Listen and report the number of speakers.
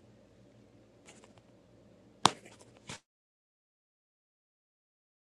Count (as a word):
zero